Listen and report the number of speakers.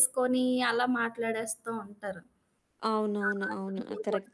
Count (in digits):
2